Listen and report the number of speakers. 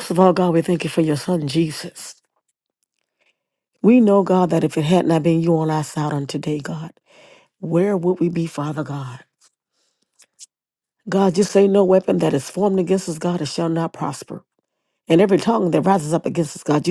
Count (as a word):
one